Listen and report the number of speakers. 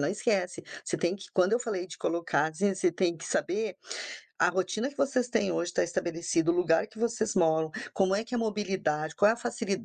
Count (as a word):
one